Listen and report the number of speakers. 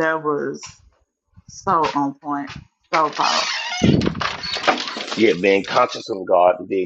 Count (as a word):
two